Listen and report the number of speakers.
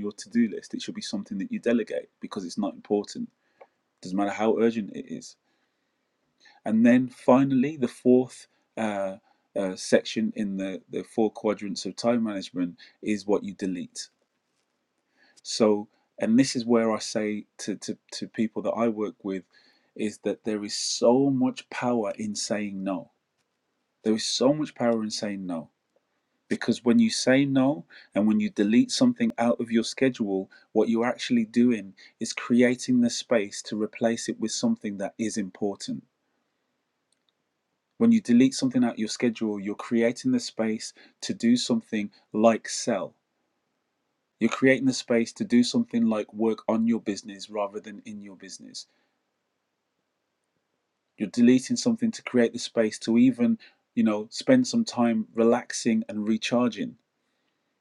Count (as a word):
one